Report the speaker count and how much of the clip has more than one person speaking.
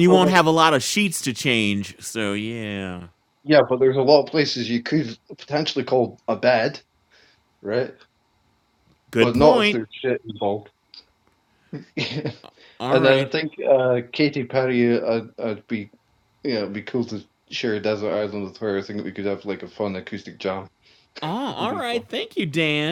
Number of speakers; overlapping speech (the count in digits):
2, about 8%